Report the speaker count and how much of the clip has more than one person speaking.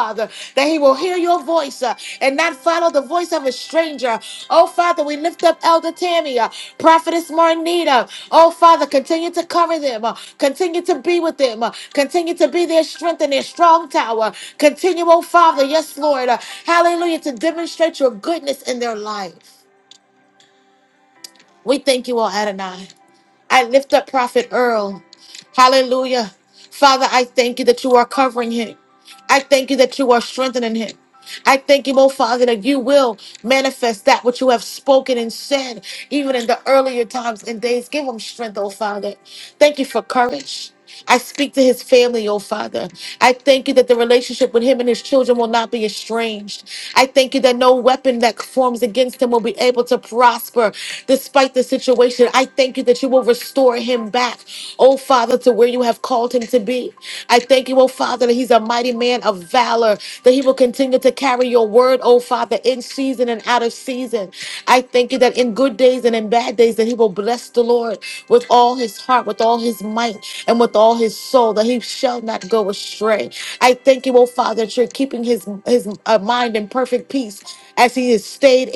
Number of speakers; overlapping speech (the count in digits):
1, no overlap